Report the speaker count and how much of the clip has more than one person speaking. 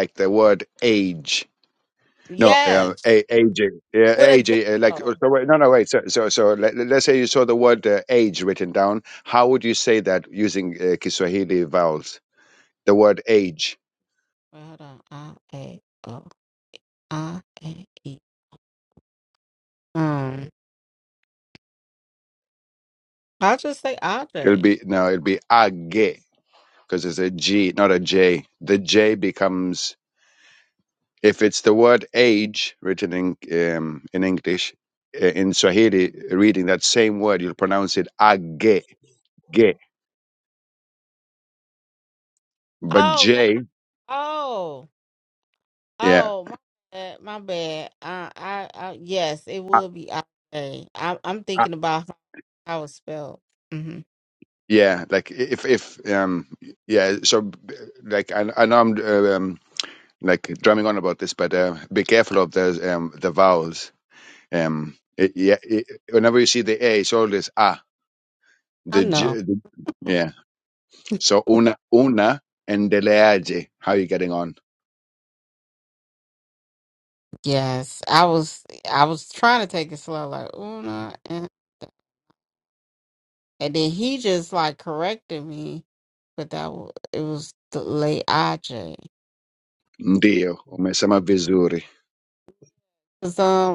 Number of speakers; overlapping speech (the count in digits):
2, about 3%